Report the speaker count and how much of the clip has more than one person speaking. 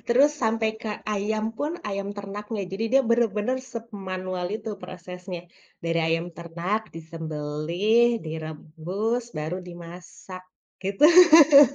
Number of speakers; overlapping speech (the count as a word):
one, no overlap